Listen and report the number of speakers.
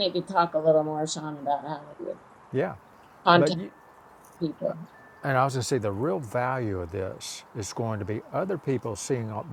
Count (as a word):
two